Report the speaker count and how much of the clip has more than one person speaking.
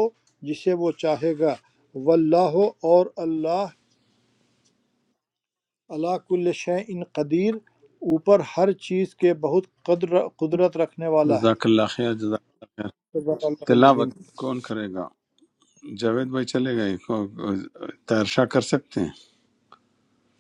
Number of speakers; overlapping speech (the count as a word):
two, about 4%